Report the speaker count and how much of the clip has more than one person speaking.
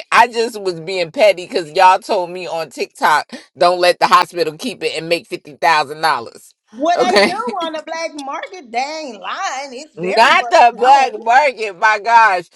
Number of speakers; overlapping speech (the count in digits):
2, about 13%